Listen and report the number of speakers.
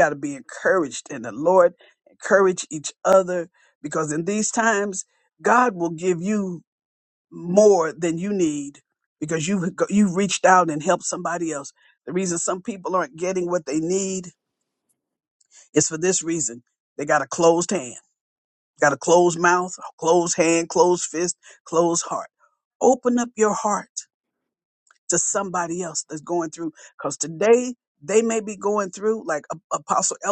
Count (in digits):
1